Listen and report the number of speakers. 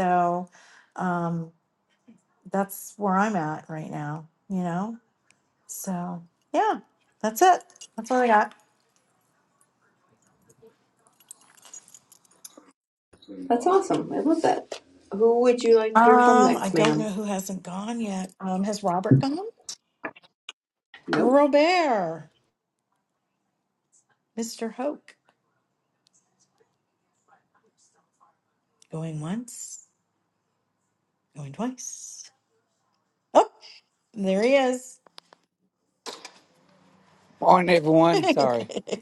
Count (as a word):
three